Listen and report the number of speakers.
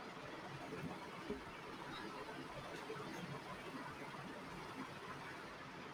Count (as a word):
zero